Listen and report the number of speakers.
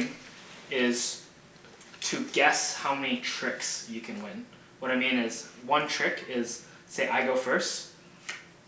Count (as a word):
one